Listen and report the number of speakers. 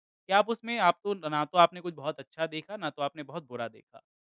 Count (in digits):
1